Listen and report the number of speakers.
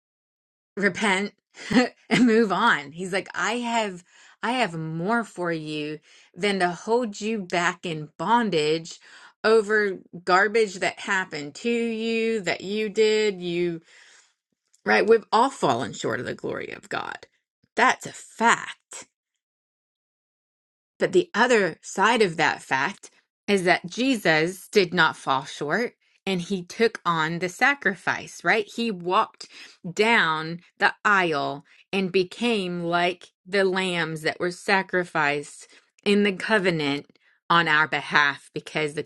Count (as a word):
one